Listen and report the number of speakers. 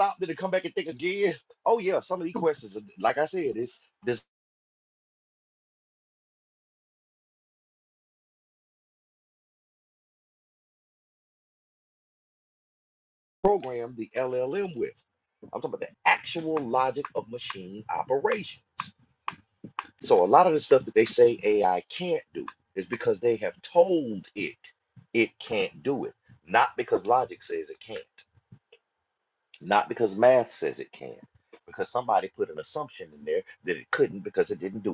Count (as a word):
one